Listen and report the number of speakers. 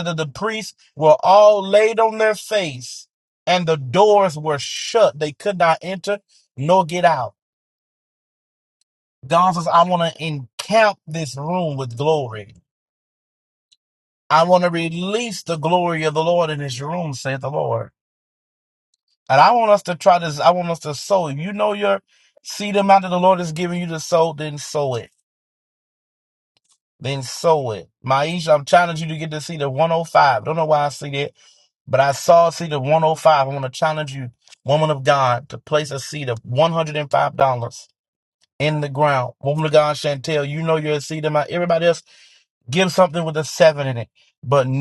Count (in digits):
1